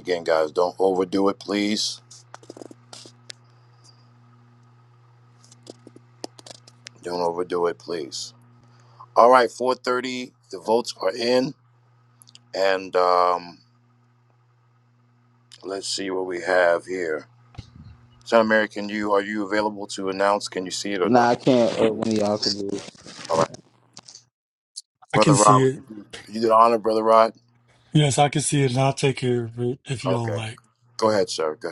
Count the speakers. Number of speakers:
3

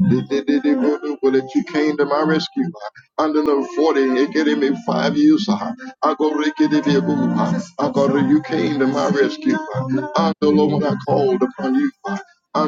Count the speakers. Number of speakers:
1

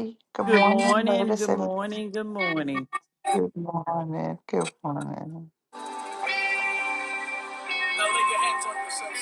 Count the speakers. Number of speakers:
3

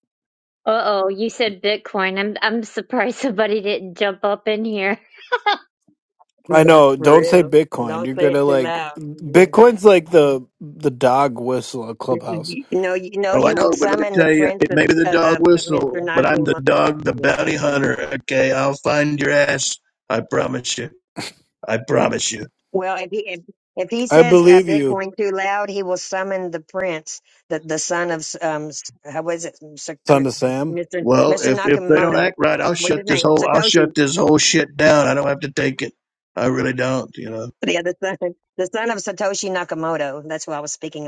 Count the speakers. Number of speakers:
4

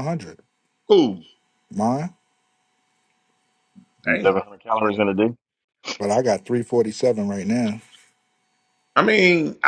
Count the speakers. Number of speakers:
3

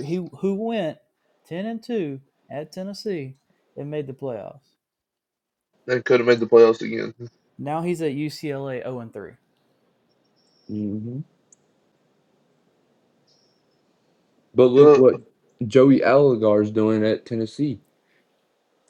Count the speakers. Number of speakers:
3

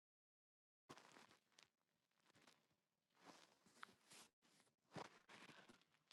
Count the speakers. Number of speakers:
0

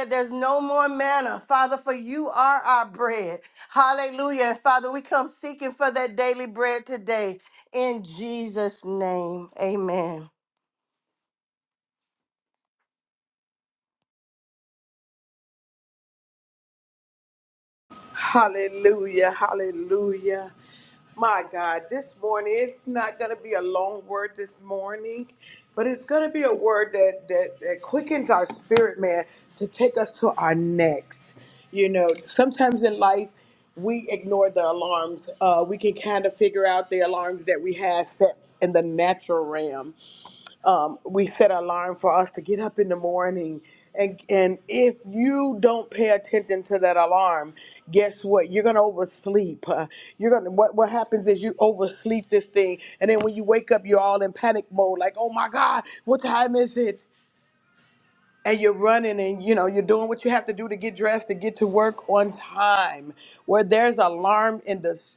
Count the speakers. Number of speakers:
2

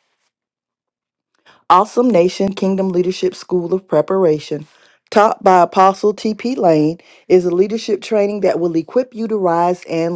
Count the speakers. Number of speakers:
1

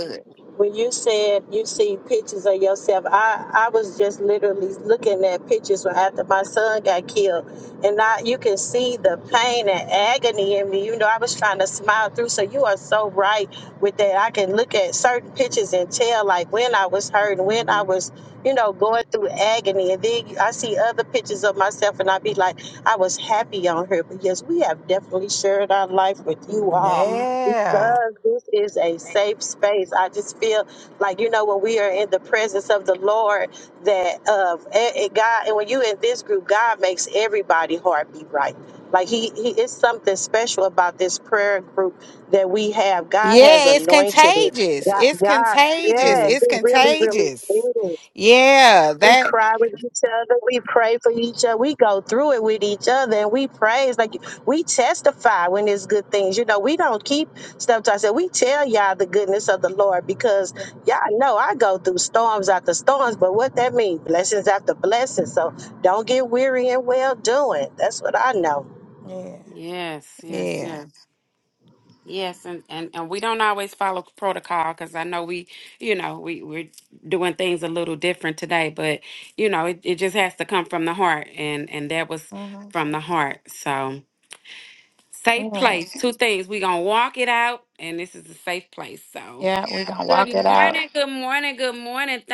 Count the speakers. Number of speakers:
3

